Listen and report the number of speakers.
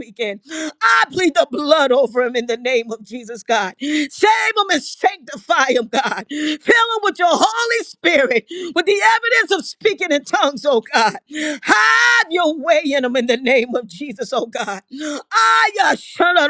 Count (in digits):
1